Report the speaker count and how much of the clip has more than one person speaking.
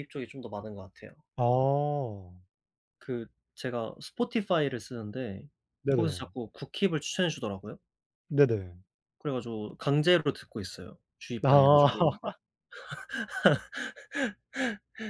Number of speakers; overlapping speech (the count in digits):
2, about 2%